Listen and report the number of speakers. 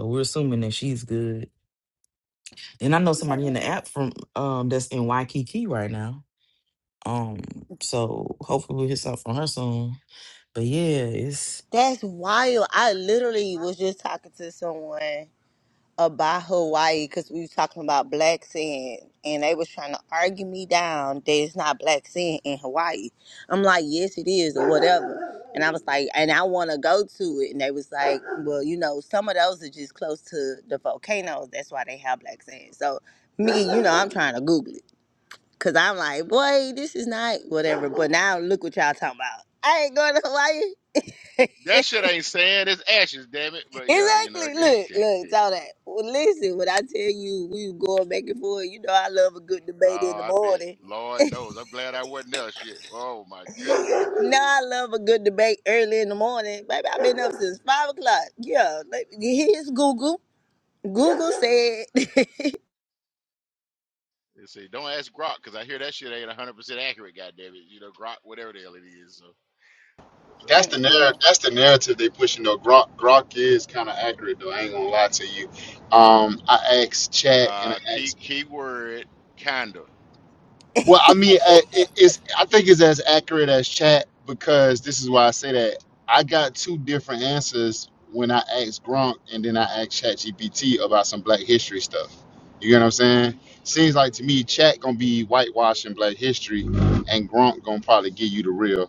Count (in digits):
4